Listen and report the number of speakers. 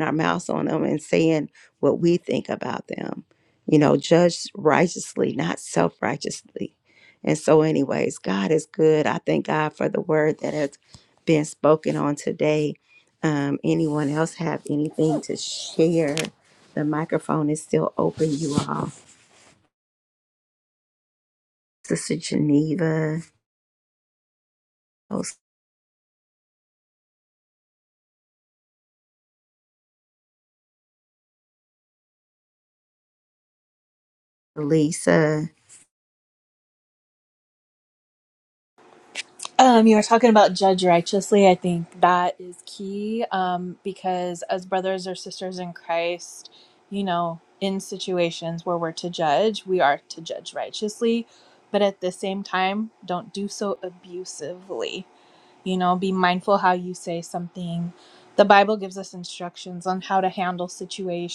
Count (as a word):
two